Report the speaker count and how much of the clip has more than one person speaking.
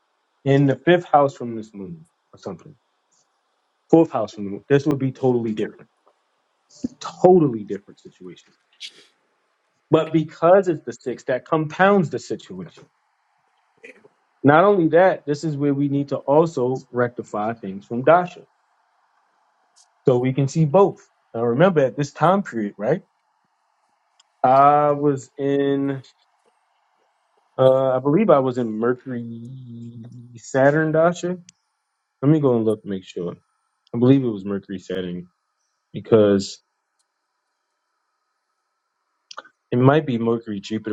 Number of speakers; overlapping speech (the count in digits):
1, no overlap